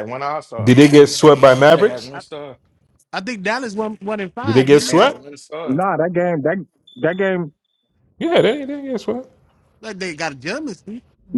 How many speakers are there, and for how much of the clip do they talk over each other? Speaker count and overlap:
four, about 12%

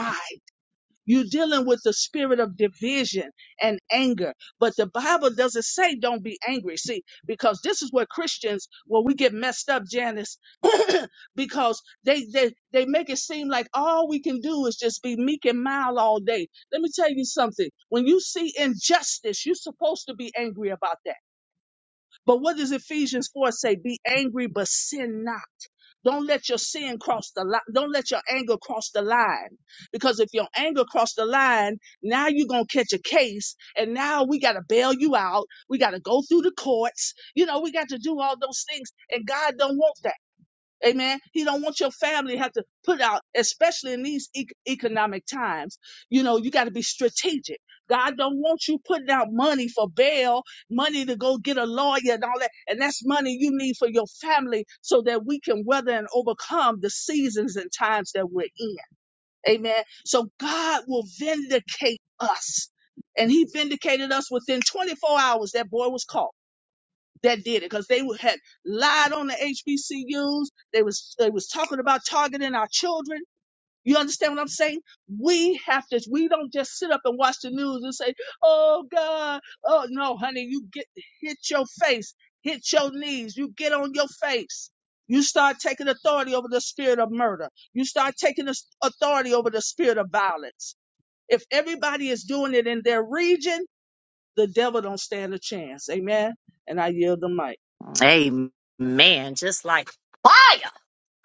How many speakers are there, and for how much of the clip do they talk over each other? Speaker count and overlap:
two, no overlap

